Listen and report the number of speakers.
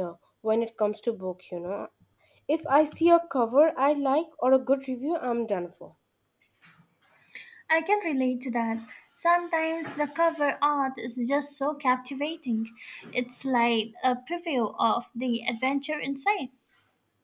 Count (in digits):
2